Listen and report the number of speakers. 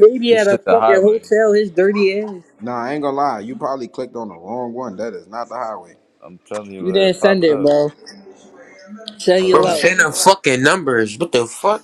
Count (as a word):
four